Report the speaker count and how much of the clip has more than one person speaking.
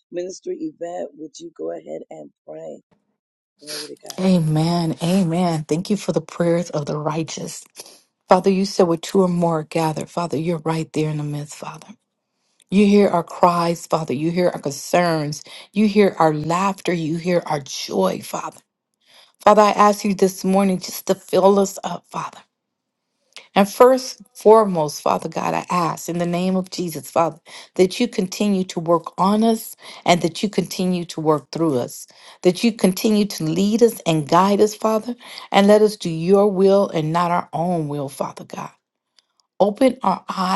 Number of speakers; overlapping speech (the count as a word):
two, under 1%